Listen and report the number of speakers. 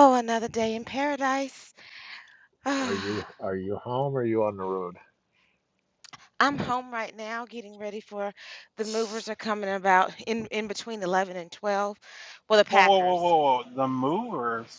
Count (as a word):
three